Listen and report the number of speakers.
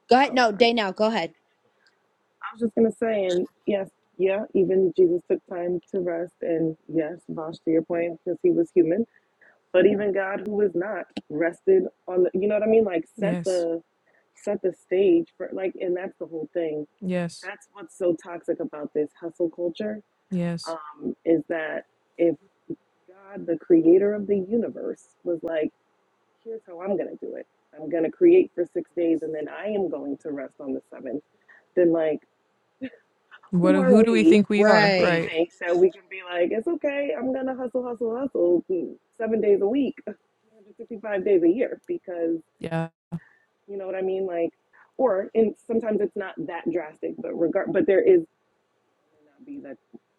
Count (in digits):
3